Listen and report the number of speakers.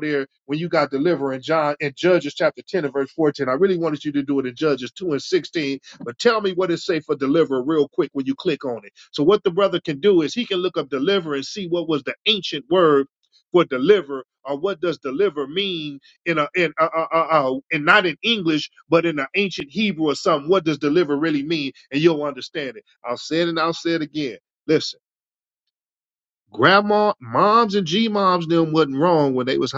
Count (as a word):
one